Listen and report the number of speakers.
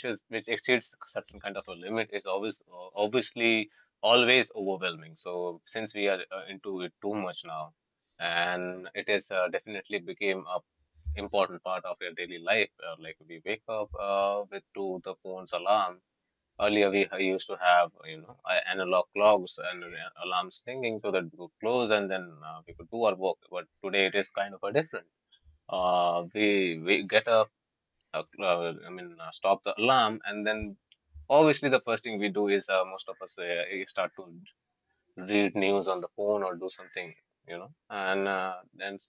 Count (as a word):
one